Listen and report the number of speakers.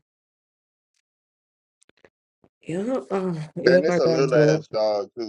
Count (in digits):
2